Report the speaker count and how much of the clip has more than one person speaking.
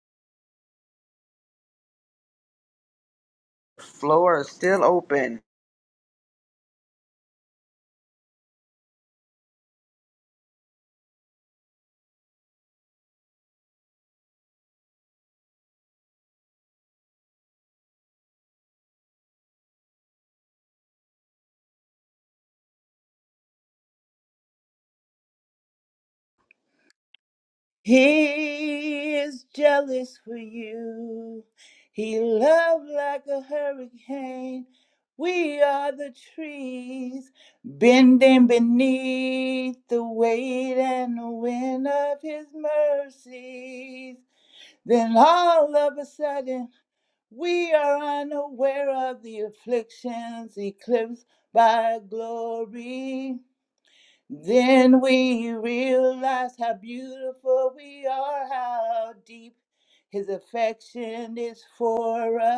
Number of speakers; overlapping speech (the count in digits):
2, no overlap